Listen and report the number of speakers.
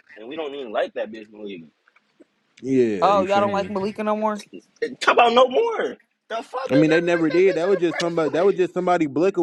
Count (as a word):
three